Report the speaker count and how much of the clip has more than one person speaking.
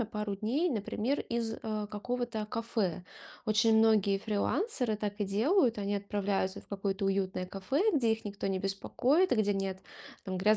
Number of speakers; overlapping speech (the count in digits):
1, no overlap